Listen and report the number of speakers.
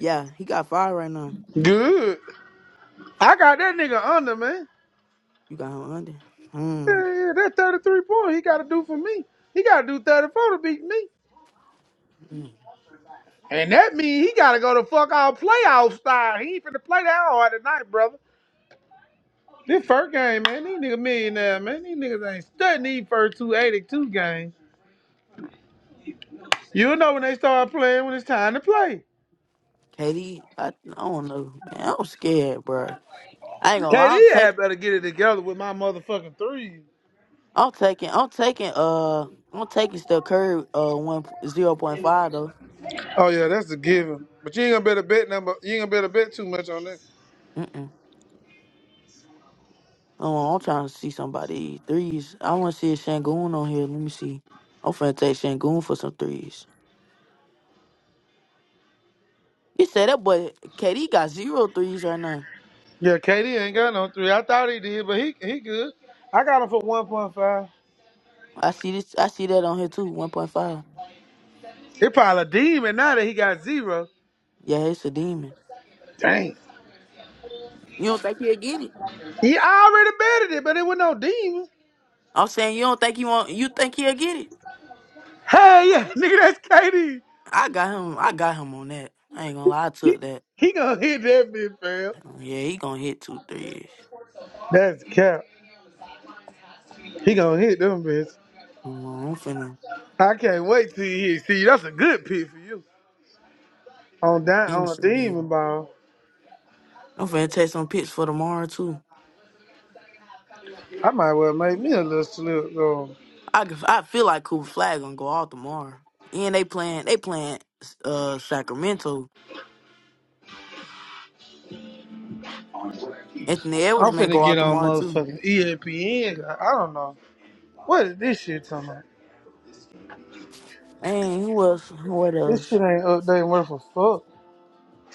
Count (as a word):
two